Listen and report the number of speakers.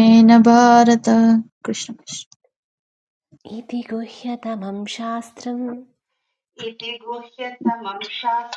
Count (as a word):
three